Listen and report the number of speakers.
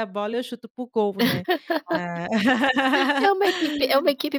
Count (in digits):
2